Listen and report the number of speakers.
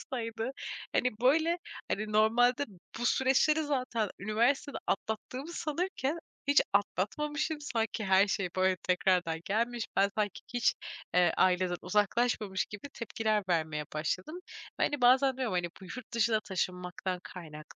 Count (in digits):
1